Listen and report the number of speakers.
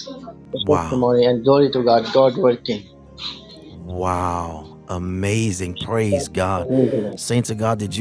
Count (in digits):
2